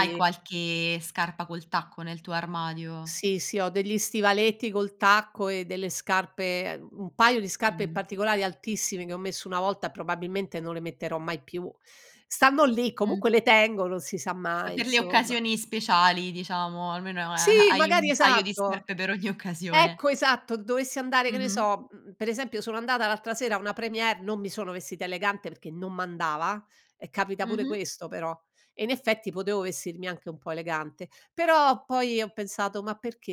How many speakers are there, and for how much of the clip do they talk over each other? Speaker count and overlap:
two, about 12%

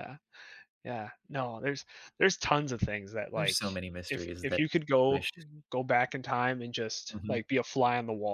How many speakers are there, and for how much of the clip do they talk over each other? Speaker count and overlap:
two, about 20%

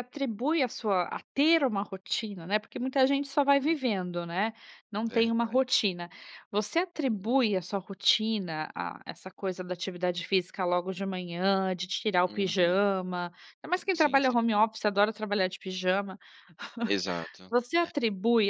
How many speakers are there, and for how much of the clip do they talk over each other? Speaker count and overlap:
two, about 8%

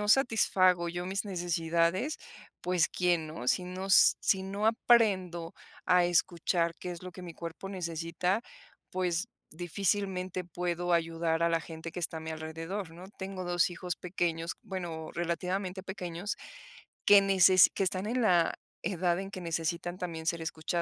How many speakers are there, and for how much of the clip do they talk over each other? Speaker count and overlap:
one, no overlap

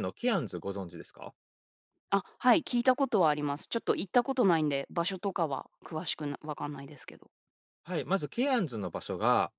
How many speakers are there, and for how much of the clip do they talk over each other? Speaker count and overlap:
two, no overlap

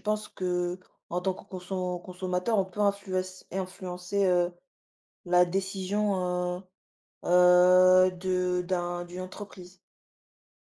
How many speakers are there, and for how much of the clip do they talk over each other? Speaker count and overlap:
one, no overlap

